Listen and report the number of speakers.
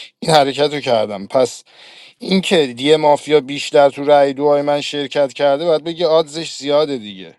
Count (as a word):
one